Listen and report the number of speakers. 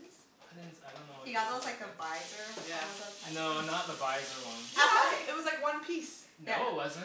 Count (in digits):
3